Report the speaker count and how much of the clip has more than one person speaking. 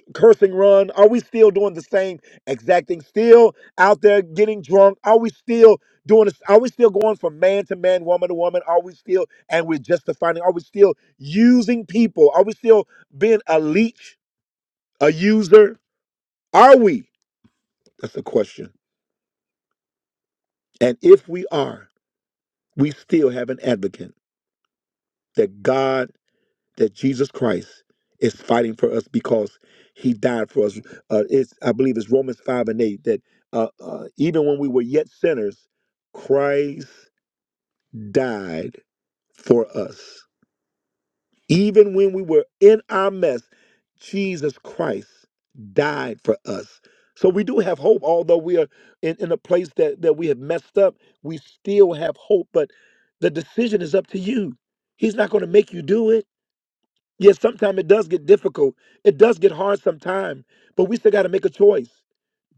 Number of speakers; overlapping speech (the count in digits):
1, no overlap